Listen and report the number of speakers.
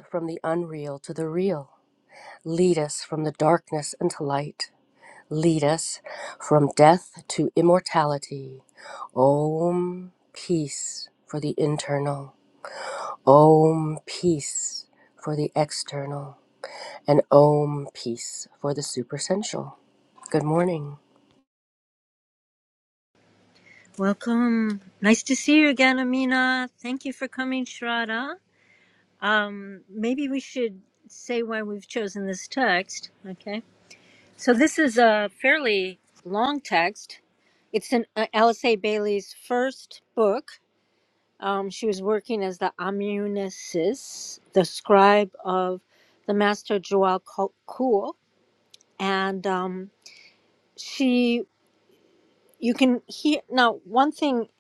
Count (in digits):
2